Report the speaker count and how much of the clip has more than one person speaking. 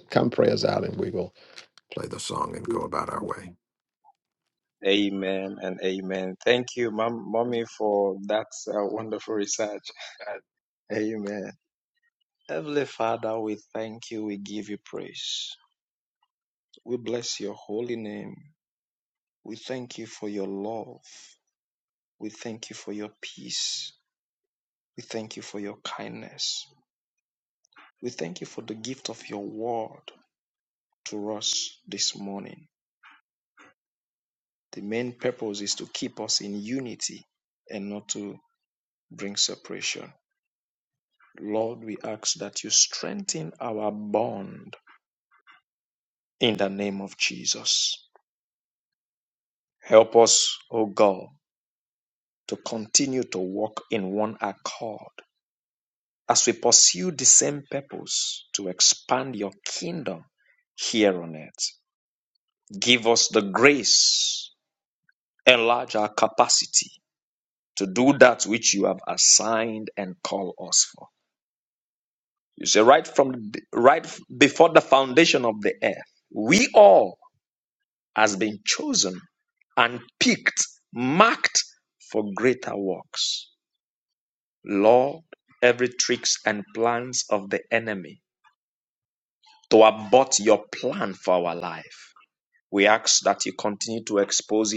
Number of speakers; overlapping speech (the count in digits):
2, no overlap